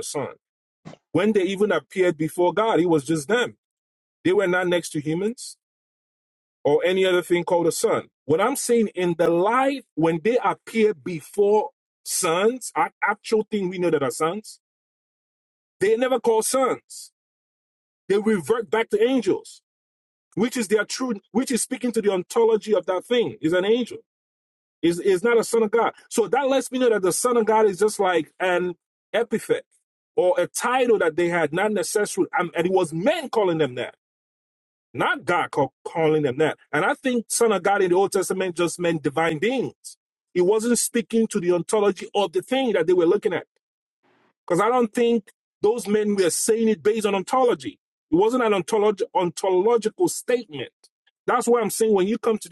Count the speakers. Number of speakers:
one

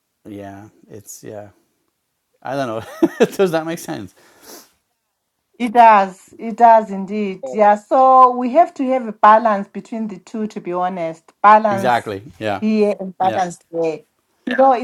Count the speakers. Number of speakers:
two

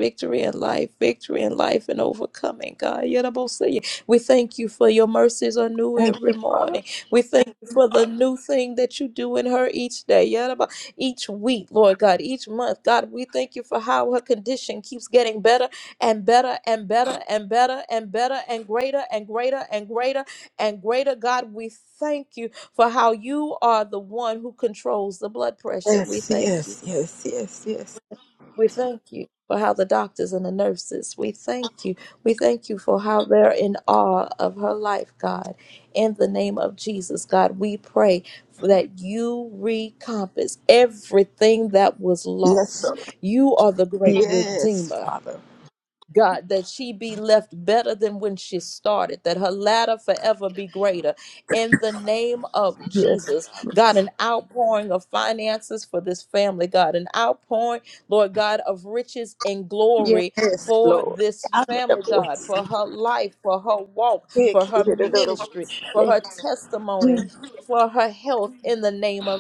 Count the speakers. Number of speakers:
two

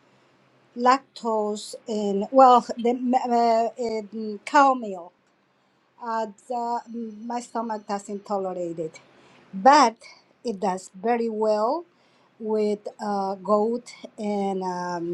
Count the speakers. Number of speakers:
one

